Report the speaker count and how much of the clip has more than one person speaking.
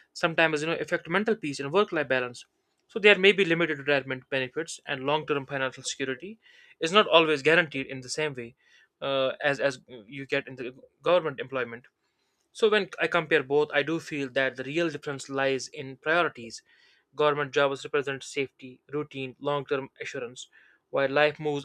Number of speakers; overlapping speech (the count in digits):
1, no overlap